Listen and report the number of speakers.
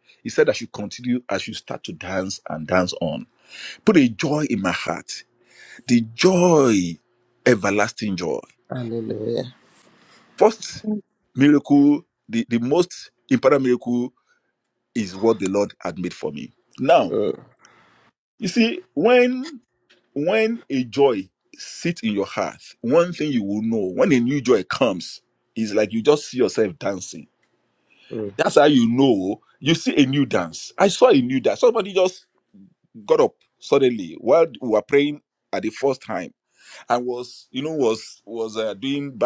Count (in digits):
2